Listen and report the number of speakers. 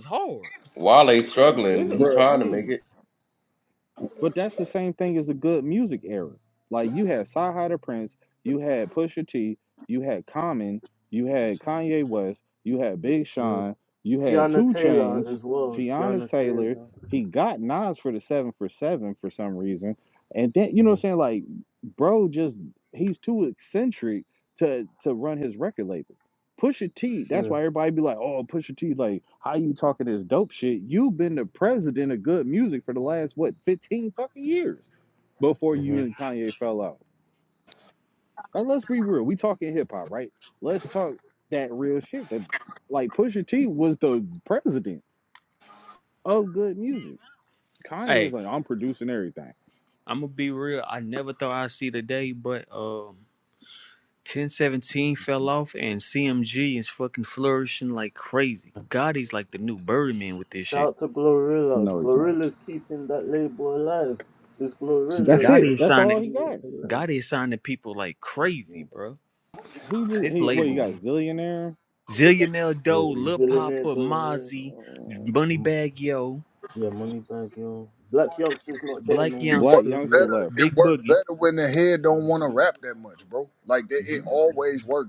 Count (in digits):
5